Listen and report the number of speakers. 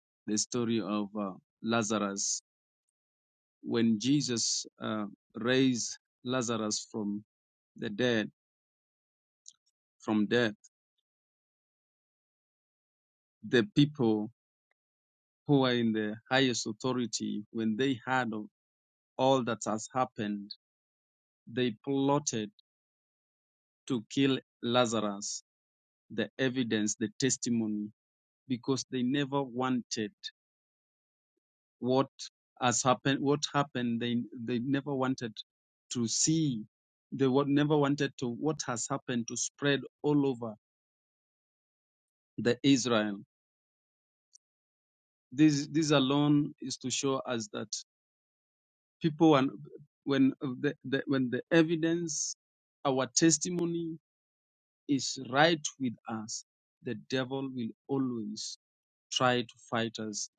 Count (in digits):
1